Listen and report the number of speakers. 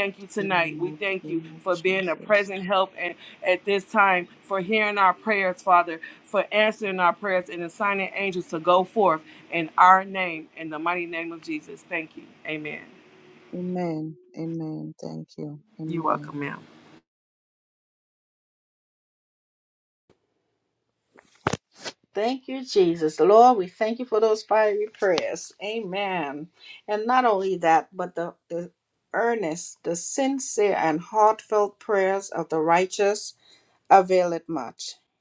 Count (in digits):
3